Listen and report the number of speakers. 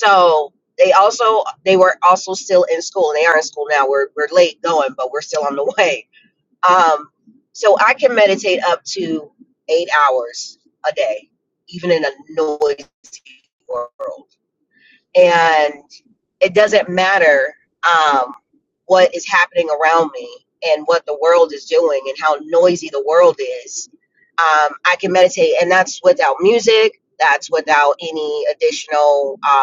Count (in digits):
1